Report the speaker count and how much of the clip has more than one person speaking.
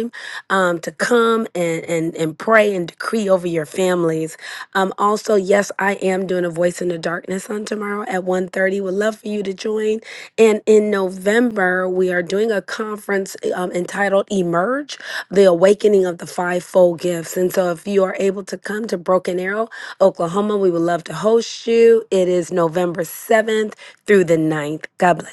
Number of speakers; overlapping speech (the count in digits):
1, no overlap